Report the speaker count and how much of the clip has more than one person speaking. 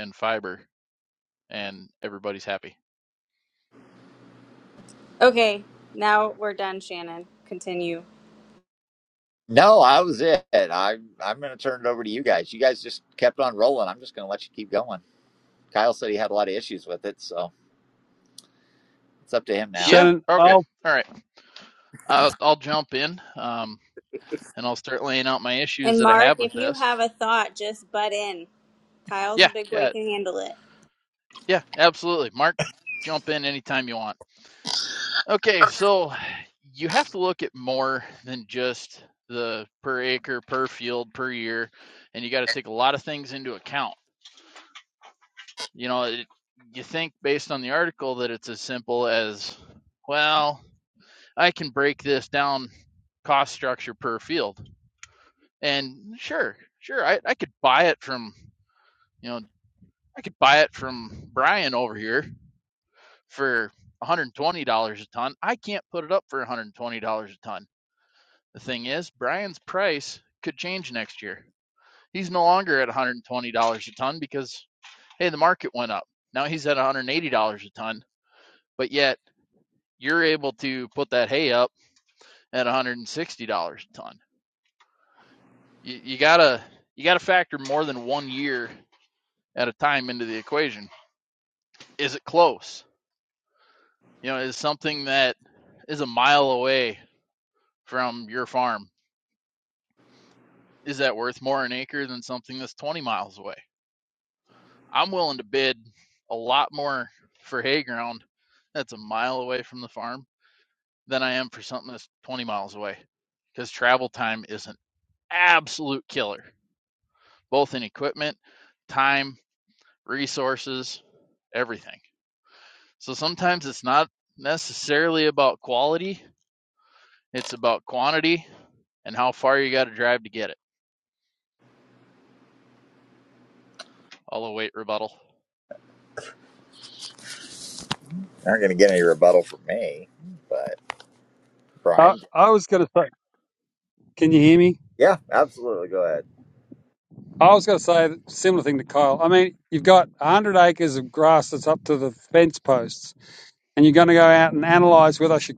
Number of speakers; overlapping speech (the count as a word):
four, about 2%